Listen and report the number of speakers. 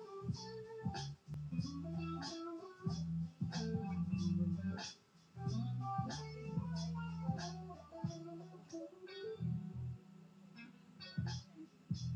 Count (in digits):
0